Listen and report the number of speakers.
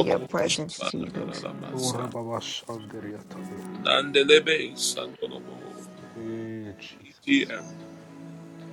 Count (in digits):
3